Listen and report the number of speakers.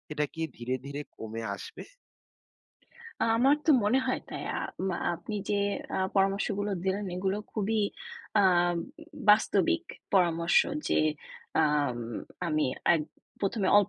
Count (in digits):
2